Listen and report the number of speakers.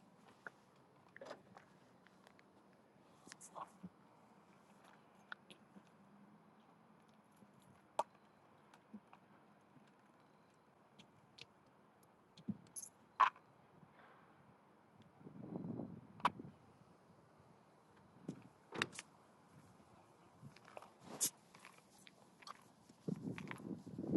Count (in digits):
0